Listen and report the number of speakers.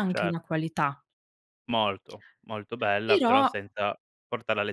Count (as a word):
two